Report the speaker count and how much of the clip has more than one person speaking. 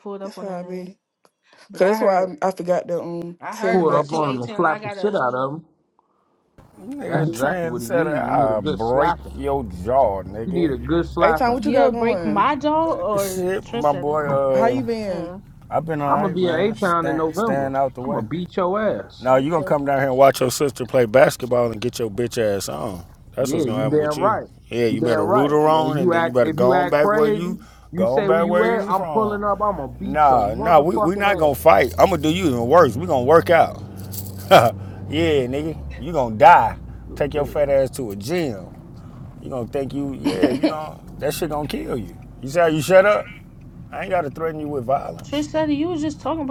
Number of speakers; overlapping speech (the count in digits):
4, about 38%